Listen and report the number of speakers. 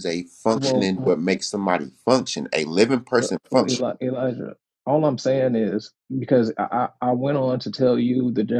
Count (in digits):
2